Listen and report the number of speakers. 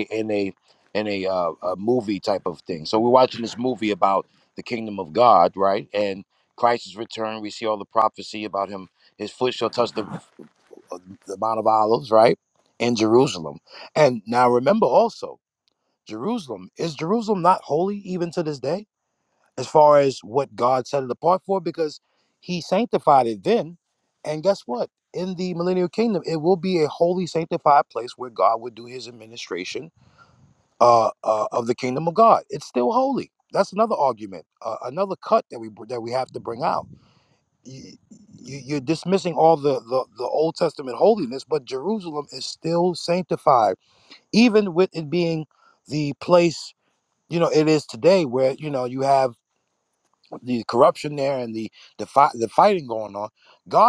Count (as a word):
one